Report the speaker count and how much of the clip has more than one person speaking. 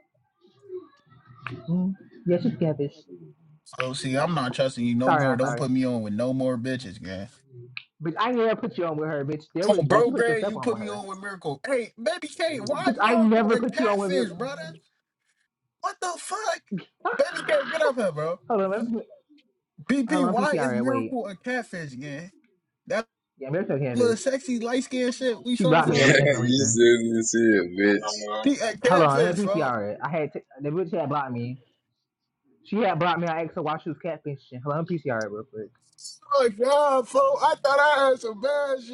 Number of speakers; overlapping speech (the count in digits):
3, about 18%